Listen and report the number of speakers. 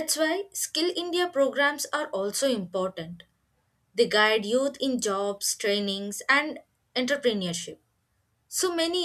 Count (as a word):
one